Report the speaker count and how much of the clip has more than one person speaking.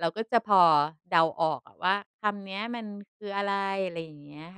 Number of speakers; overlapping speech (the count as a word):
one, no overlap